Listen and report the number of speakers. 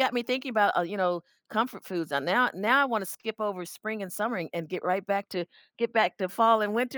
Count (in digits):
1